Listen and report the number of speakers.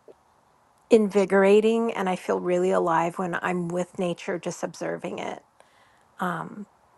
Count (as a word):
one